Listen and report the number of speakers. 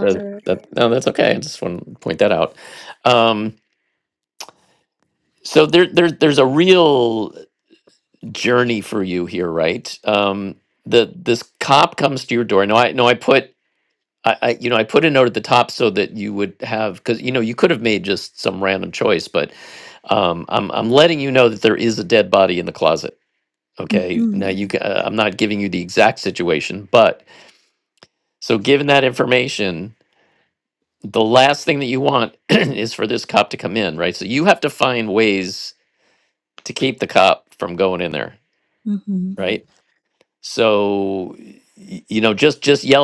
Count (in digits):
2